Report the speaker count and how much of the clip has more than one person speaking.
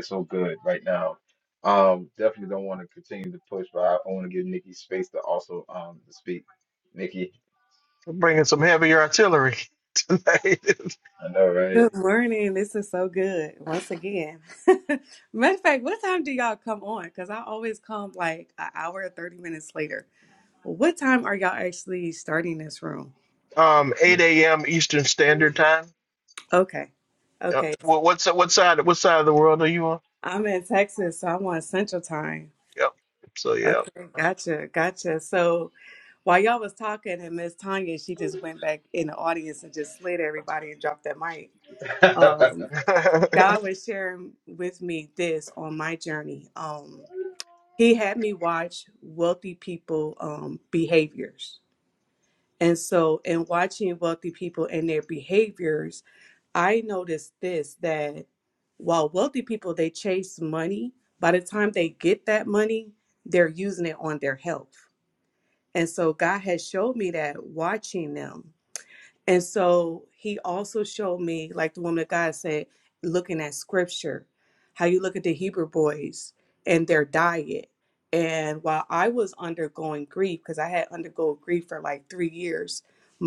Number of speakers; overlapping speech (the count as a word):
three, about 1%